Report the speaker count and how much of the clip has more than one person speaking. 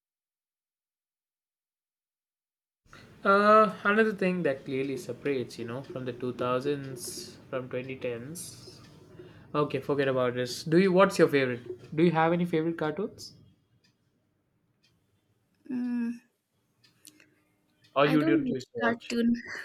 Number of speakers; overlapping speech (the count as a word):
two, about 5%